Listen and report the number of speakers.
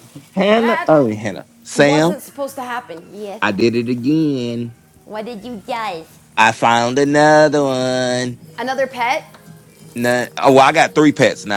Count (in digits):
2